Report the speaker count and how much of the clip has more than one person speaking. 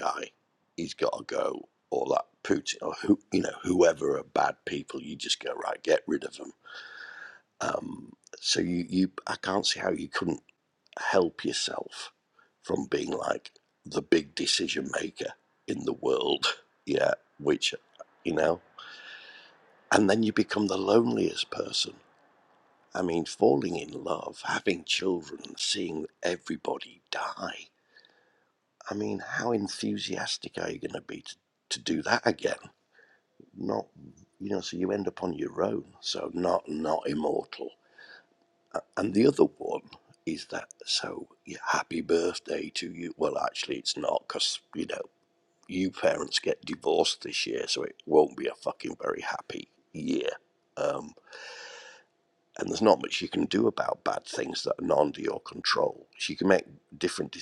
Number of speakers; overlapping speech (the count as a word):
one, no overlap